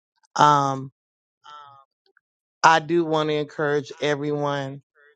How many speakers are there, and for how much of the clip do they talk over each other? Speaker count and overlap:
one, no overlap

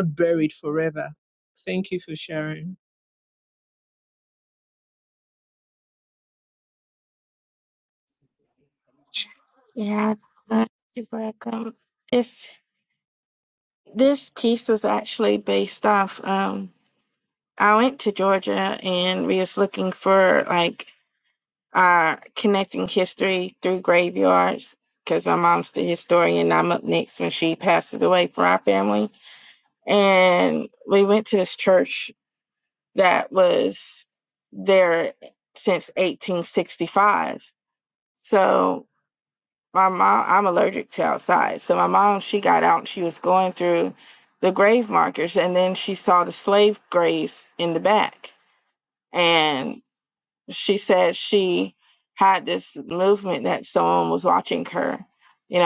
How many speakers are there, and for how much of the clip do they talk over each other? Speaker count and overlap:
two, no overlap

